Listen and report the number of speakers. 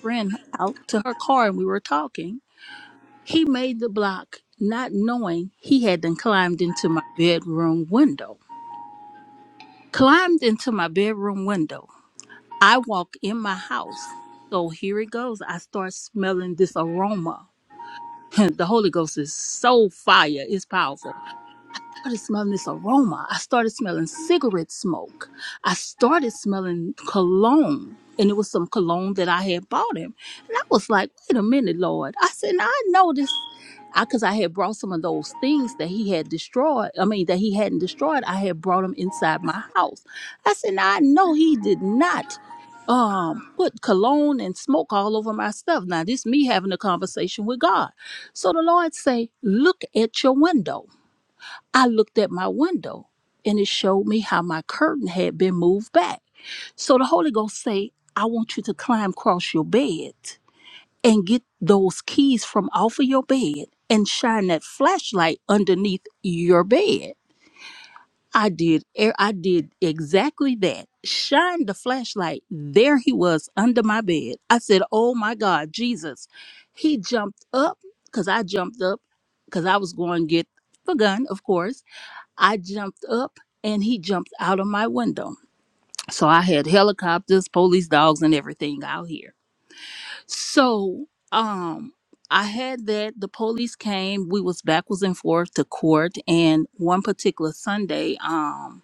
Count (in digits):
1